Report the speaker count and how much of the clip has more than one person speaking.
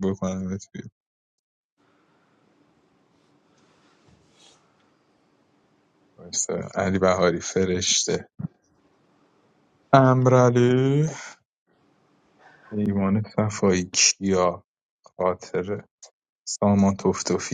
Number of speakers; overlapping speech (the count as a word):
one, no overlap